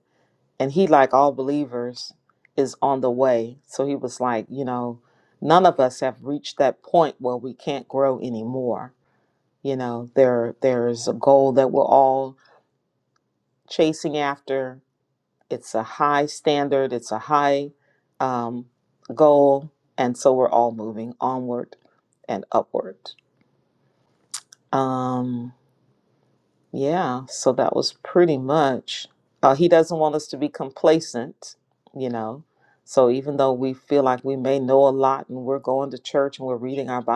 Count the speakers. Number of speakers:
1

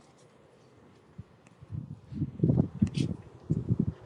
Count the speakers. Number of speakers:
0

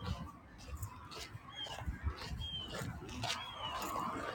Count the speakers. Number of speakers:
0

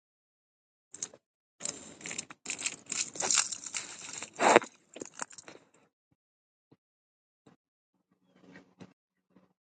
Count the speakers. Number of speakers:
0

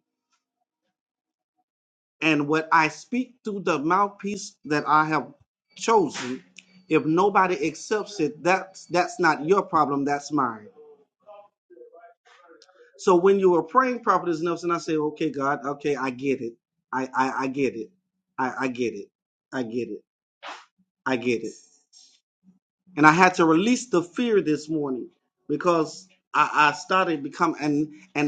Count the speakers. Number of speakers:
1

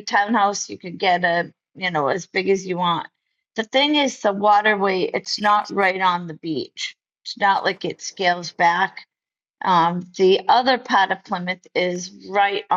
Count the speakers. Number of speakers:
1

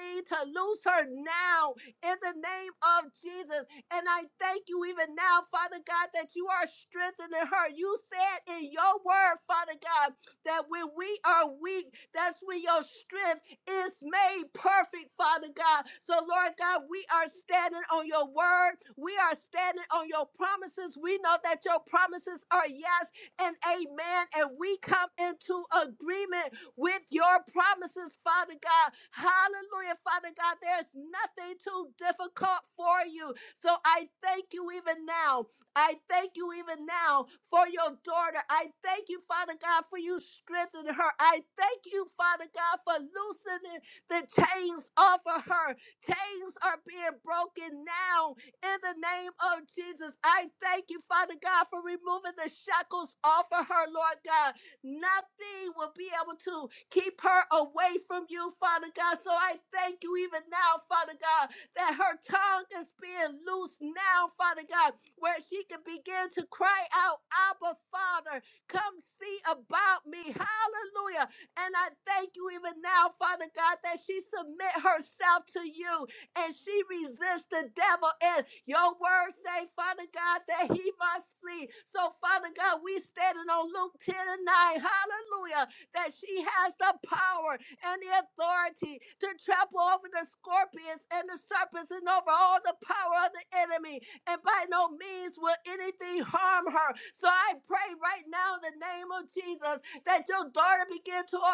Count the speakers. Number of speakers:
1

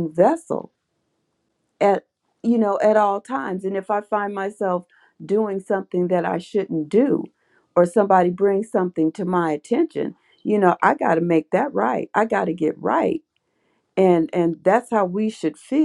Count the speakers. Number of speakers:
1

